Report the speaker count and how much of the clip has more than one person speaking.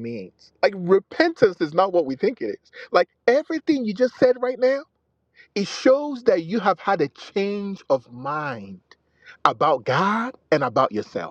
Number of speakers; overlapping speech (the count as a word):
one, no overlap